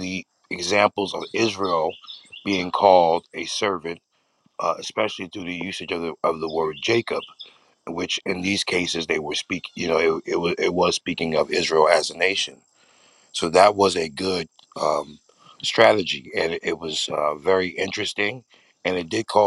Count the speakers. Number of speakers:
1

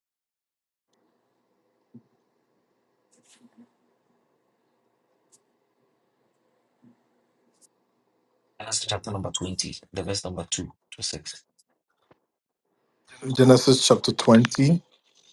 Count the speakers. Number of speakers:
2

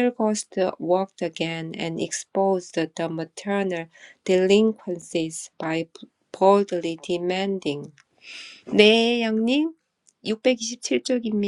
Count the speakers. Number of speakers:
1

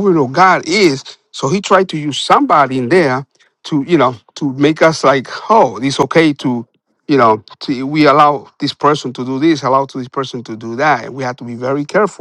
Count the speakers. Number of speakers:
1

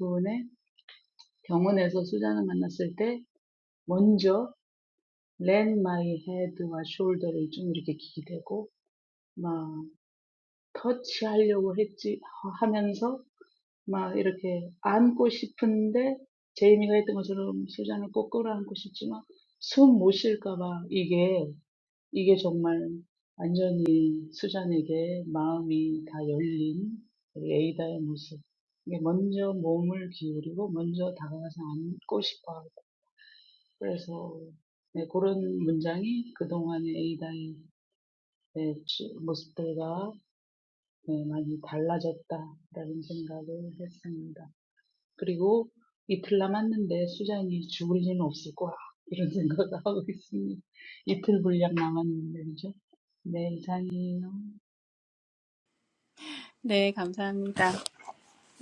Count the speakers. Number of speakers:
2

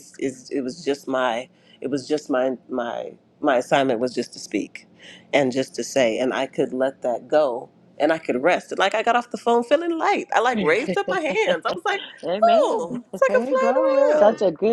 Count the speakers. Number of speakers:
3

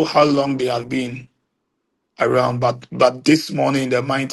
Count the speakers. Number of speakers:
1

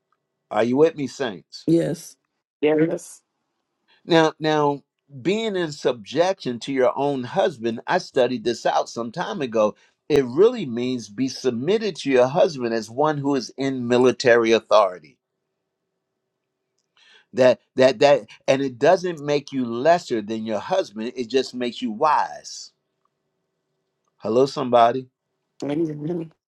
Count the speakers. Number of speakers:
2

